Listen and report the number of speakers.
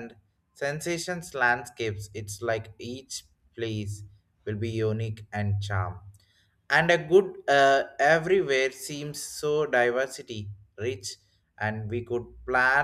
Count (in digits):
1